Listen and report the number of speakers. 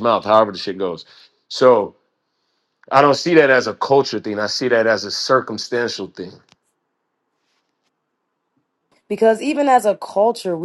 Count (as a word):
two